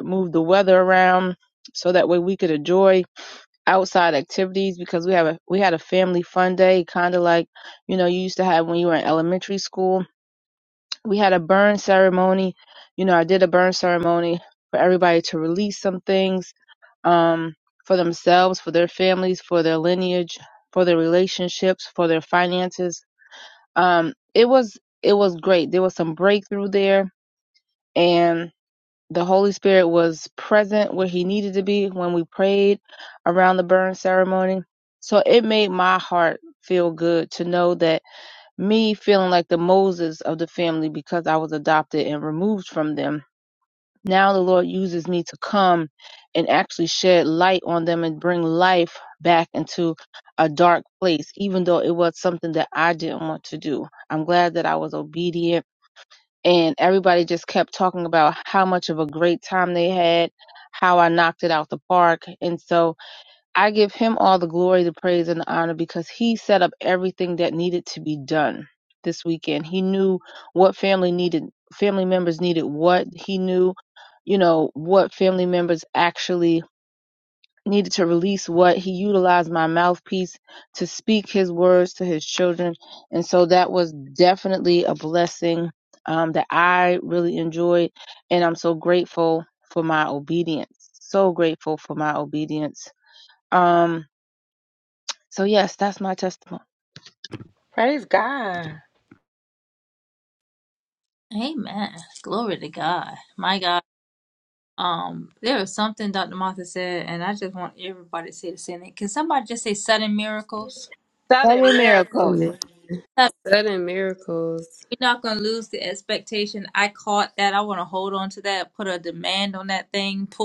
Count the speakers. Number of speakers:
4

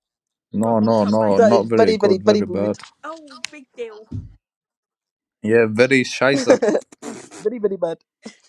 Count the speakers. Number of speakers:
3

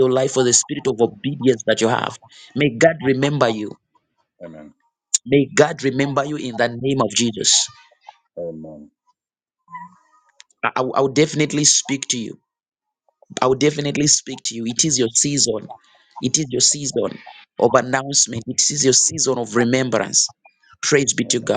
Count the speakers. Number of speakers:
2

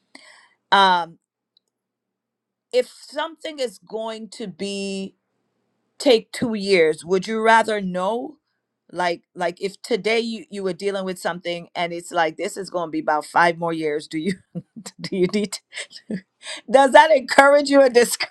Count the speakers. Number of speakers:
1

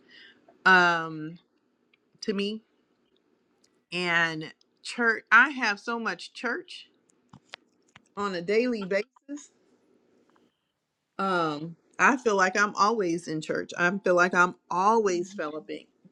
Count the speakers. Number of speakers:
1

